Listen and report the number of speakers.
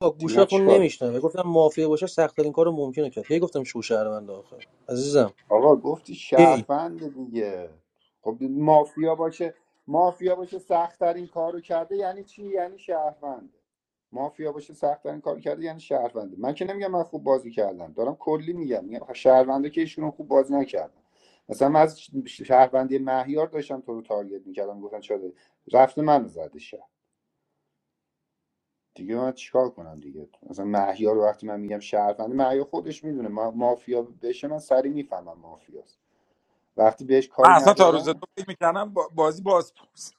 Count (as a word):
three